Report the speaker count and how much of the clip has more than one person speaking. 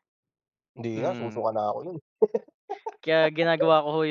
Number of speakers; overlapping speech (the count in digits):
2, about 11%